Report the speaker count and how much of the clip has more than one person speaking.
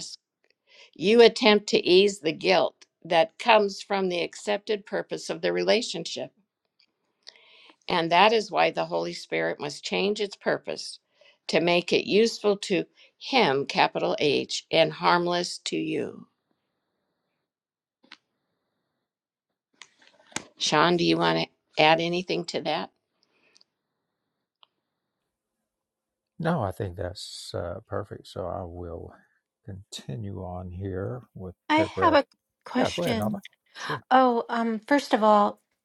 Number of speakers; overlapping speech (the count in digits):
3, about 3%